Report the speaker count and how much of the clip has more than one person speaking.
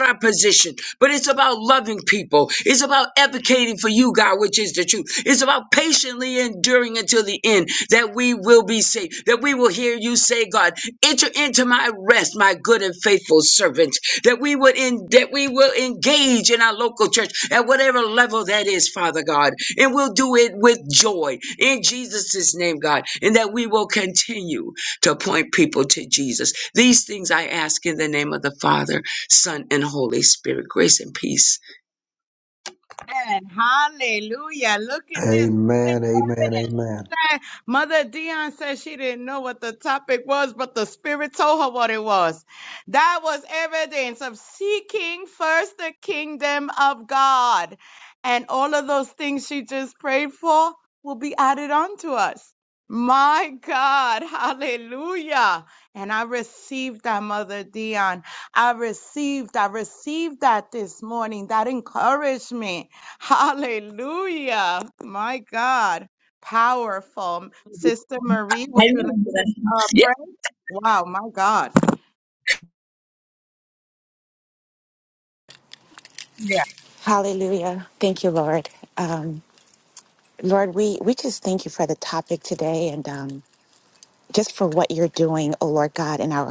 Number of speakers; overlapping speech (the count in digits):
4, about 2%